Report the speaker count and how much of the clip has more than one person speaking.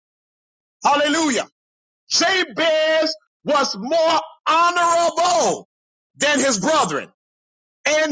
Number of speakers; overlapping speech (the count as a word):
one, no overlap